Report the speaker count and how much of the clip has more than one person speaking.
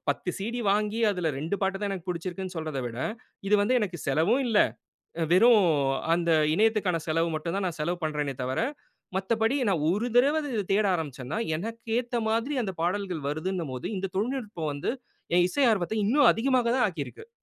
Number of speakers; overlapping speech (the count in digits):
1, no overlap